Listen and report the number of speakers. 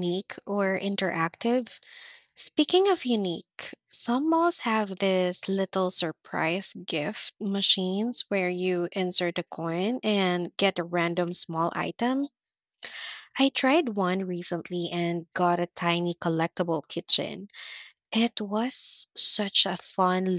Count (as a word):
one